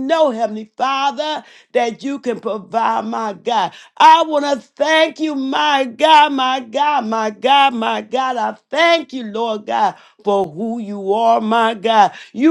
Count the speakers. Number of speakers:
1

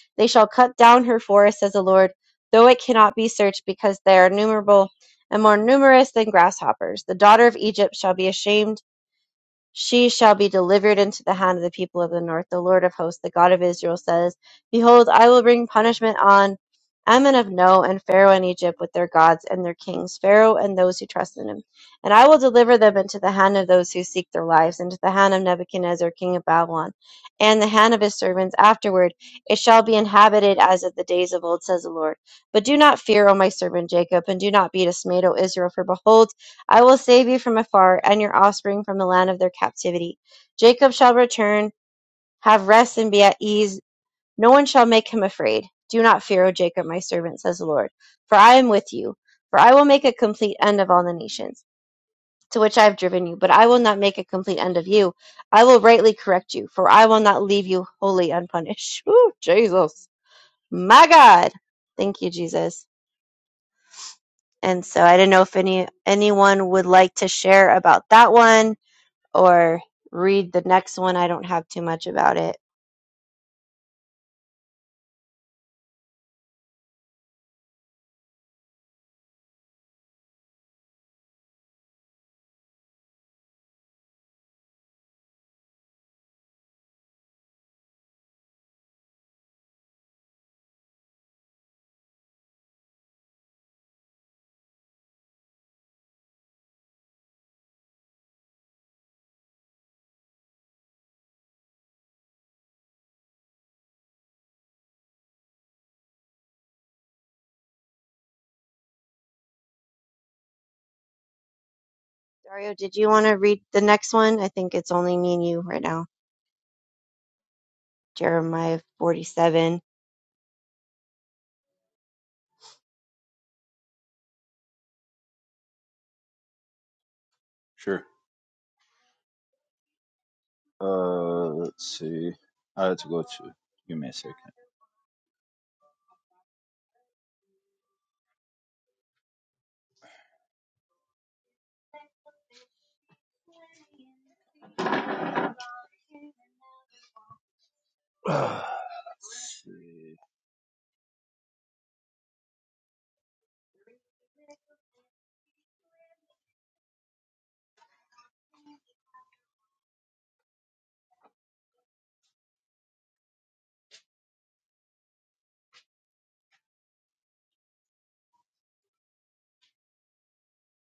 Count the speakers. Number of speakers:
2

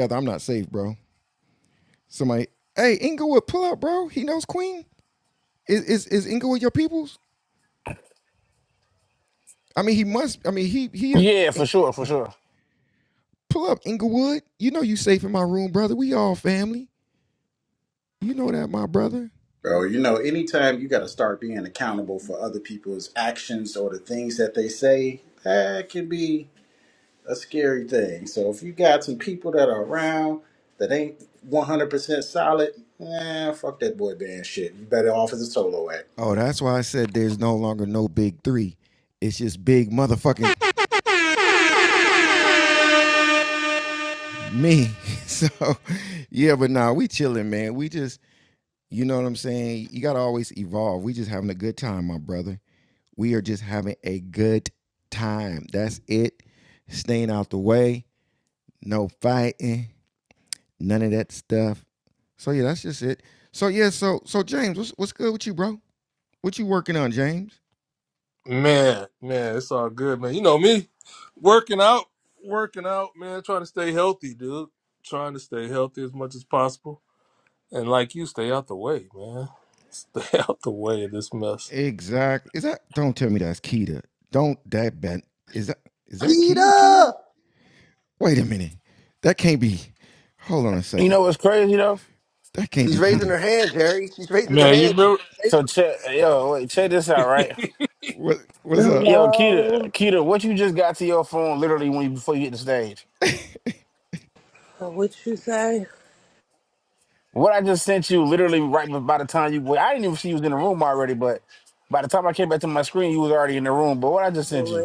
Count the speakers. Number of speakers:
6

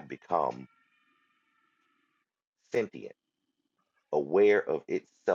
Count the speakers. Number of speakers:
1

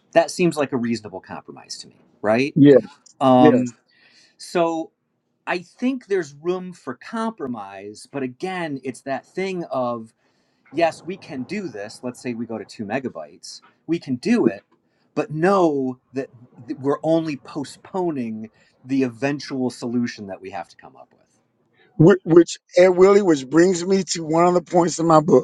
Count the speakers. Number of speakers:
2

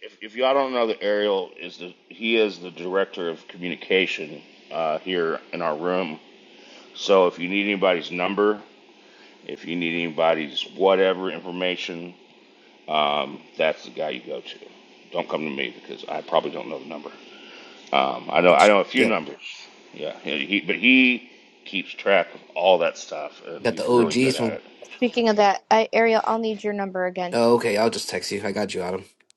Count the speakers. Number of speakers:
3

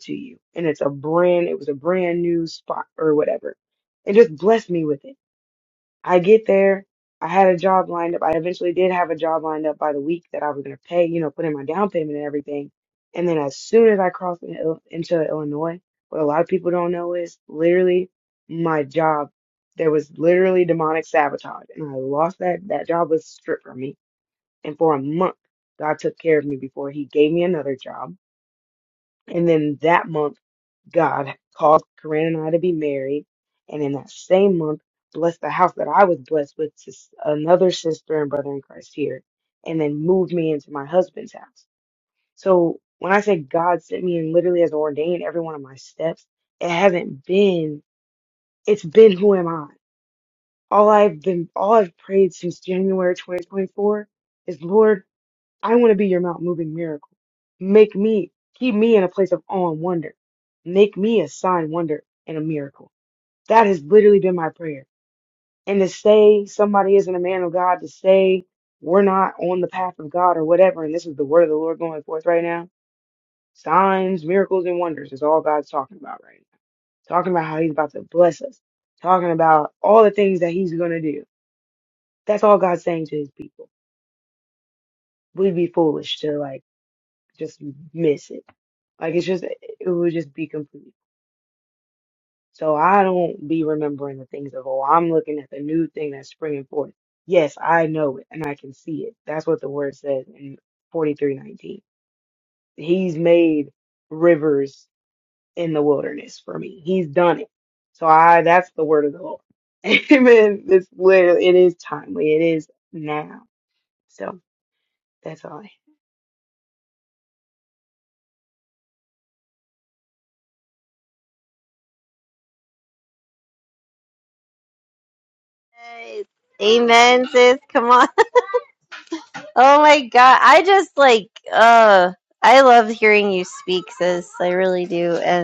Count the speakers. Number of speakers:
2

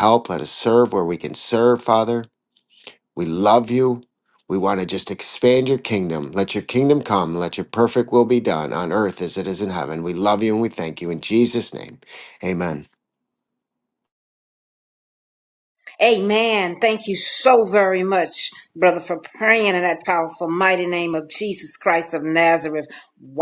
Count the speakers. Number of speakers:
2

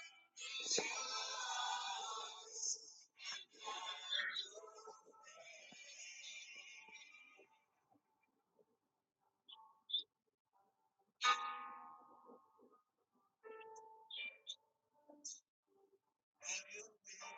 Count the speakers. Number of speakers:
0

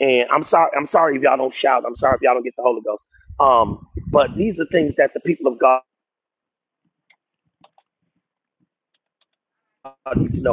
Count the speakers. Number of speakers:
1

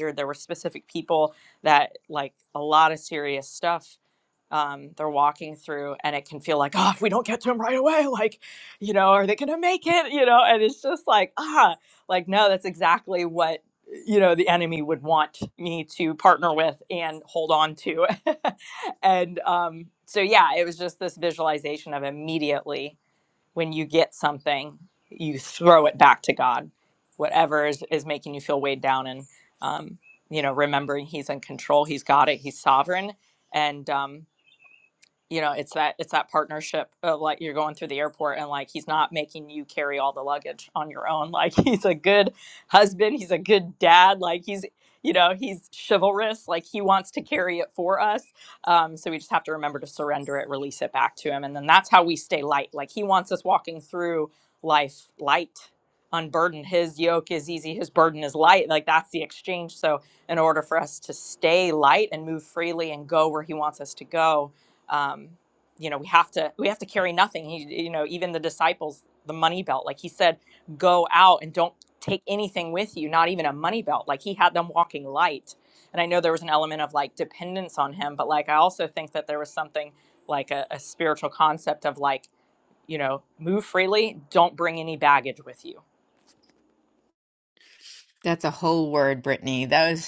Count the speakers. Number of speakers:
2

